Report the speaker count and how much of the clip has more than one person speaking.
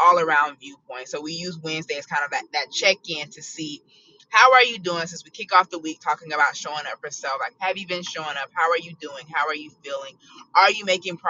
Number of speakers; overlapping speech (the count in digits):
1, no overlap